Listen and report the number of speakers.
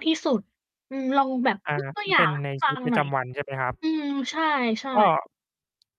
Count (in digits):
2